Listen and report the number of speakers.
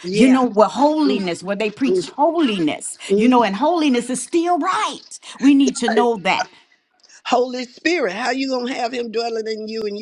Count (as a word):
two